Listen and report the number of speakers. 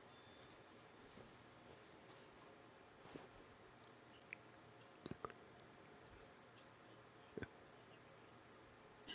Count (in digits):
0